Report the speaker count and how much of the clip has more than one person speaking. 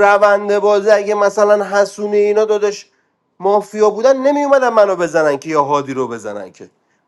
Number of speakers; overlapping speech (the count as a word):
one, no overlap